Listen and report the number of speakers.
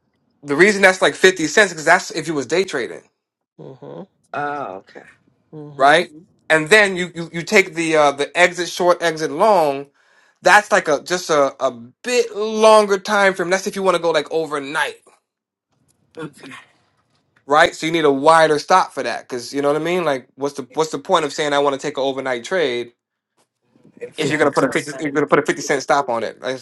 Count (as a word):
three